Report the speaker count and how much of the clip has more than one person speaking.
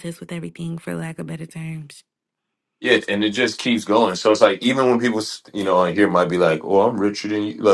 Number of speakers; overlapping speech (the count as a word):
two, no overlap